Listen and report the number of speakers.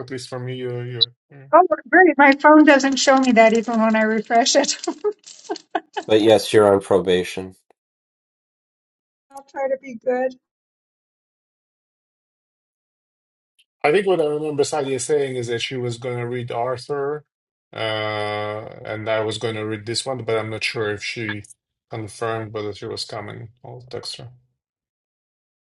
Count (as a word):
three